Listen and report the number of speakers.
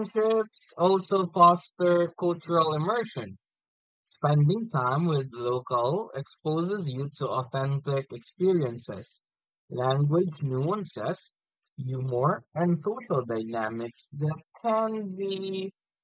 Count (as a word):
one